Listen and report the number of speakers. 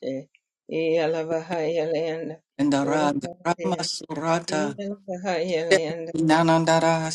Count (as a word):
two